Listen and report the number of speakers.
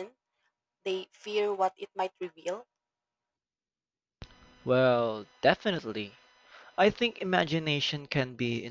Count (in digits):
2